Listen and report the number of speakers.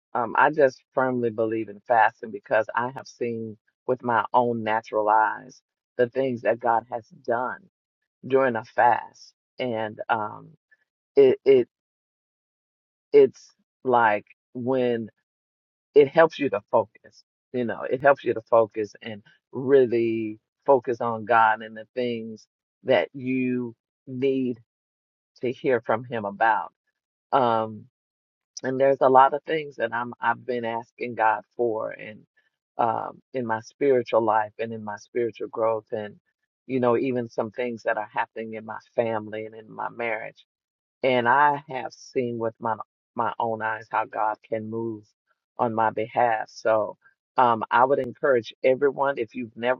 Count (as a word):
one